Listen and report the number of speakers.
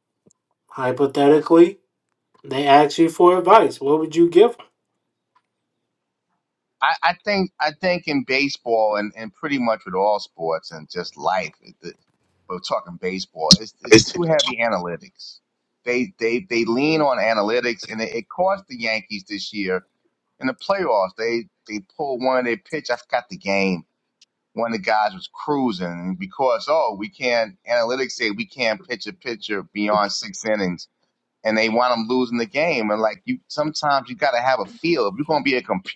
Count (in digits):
2